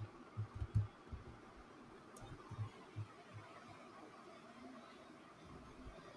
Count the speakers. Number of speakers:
0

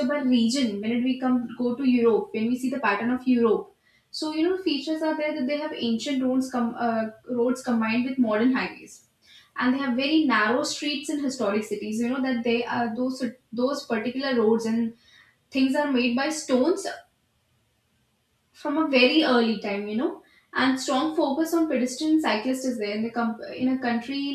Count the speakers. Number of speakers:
1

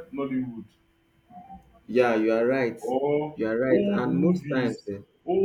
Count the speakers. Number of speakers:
2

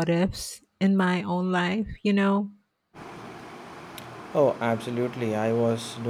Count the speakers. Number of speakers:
2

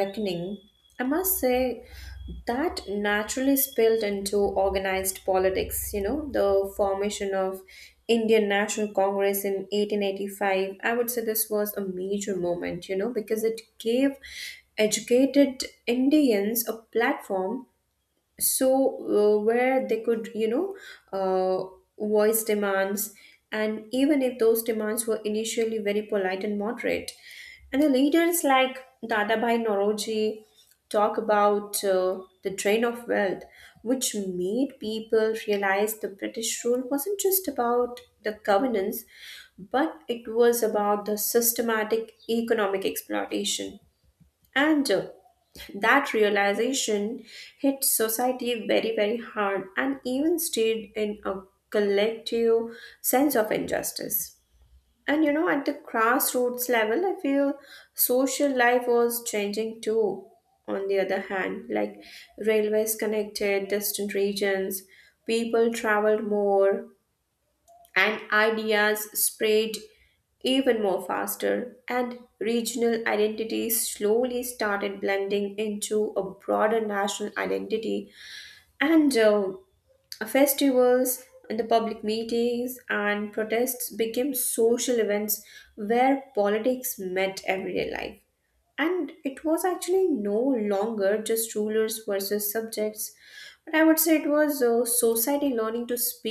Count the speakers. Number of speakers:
1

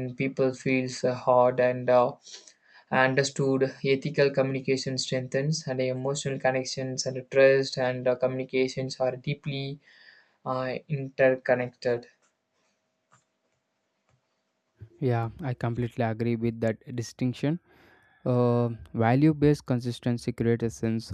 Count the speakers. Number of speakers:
2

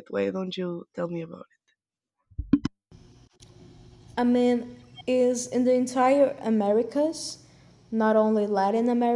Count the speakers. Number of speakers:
2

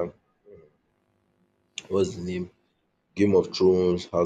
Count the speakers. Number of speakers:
1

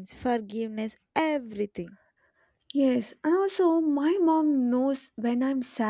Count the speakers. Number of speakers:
2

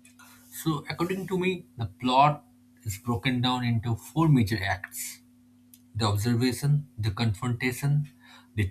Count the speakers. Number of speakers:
1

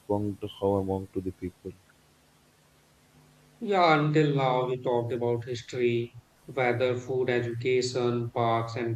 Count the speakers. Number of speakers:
2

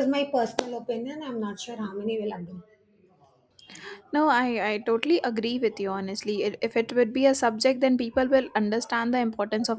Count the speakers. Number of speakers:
2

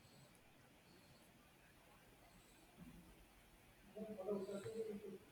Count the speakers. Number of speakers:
0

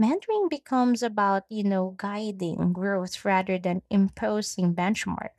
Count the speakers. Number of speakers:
1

